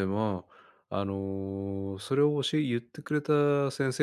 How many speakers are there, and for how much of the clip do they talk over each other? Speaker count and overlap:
1, no overlap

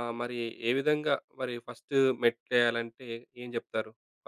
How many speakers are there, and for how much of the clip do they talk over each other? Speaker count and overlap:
1, no overlap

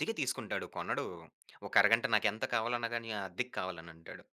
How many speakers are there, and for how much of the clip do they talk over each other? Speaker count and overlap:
1, no overlap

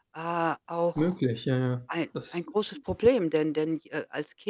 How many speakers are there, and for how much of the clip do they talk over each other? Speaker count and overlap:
2, about 12%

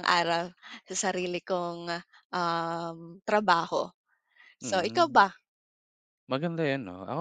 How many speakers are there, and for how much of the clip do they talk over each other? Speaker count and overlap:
2, about 8%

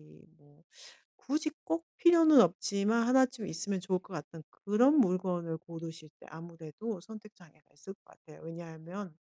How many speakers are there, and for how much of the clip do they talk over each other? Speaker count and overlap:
1, no overlap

